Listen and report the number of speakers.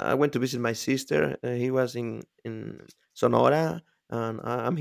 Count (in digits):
1